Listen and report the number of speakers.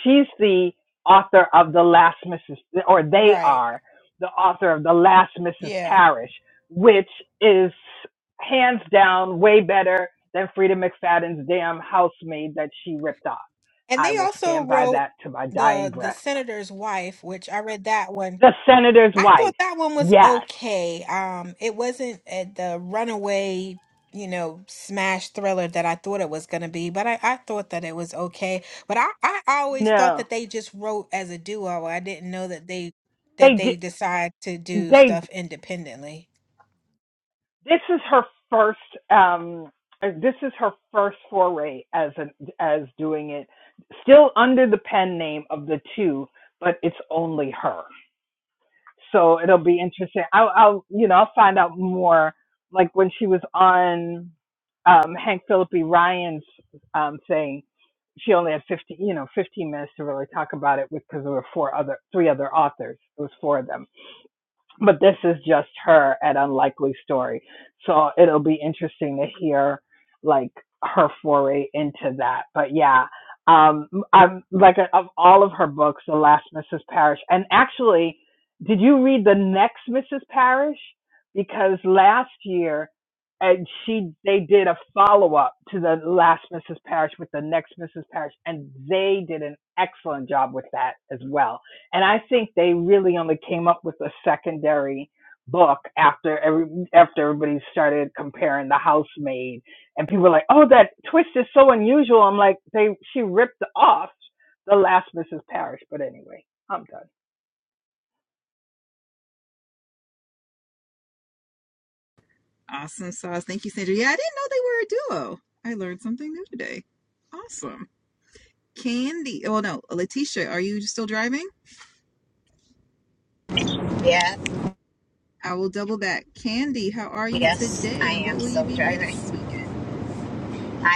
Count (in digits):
4